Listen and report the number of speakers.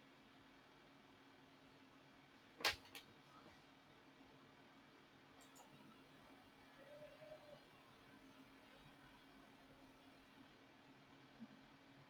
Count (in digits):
0